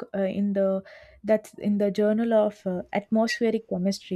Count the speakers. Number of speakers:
1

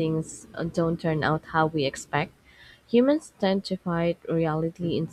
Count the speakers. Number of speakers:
1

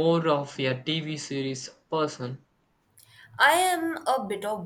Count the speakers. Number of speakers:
2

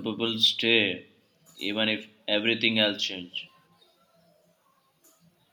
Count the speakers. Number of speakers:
1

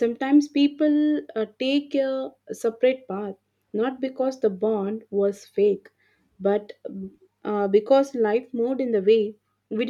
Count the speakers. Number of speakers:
1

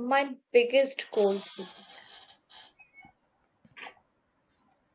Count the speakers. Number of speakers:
1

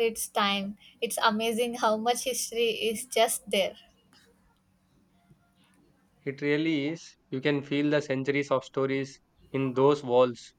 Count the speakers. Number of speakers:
2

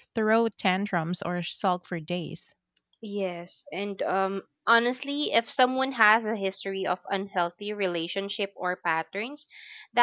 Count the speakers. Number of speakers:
2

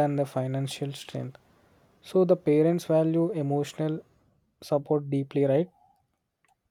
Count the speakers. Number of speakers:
1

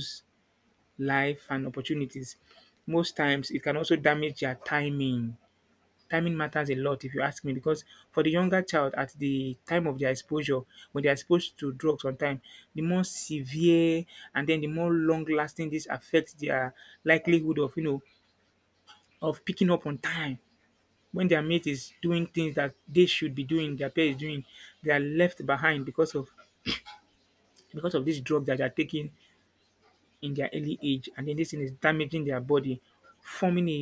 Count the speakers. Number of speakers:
1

